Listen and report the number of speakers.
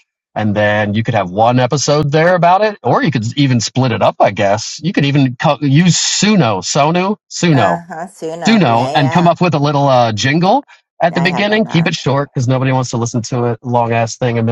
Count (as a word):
two